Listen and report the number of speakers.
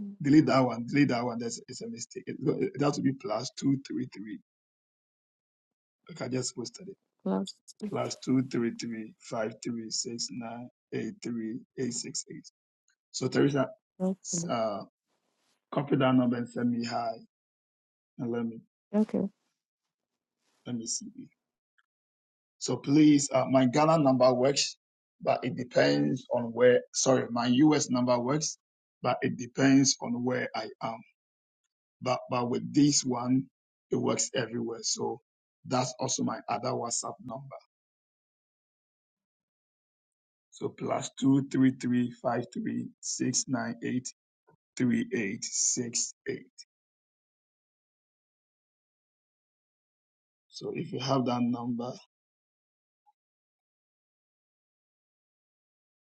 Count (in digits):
2